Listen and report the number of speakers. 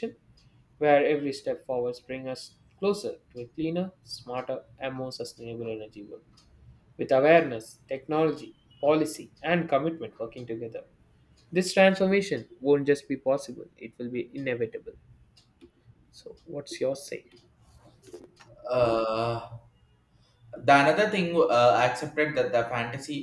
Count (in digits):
2